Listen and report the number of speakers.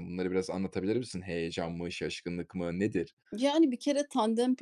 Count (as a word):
two